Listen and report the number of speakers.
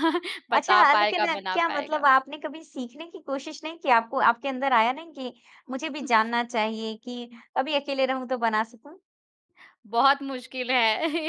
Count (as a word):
two